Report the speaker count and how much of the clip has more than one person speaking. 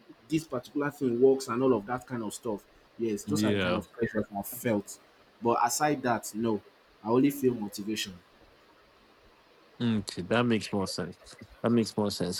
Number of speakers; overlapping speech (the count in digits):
2, about 4%